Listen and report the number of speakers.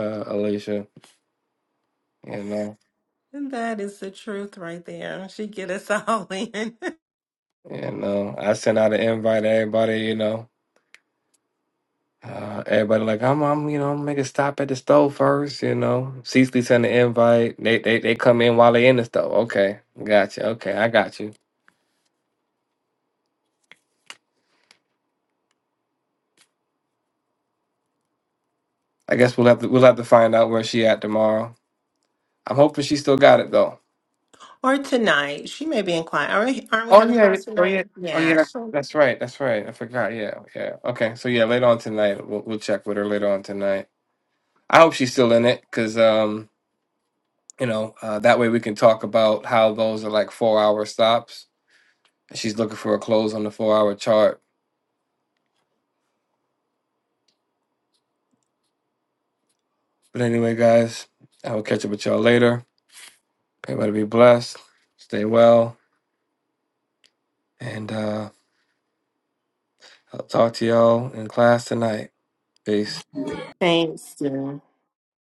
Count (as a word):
two